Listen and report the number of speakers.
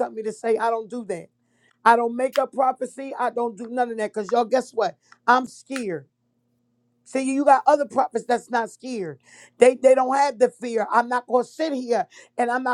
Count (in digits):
1